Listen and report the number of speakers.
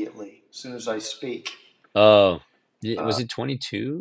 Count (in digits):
2